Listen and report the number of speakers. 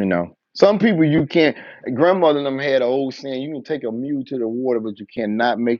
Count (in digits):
1